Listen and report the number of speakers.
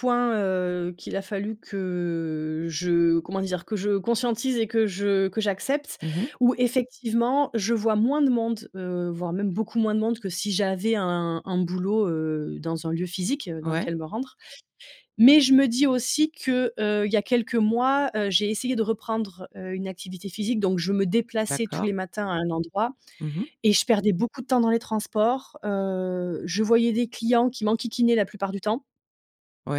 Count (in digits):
2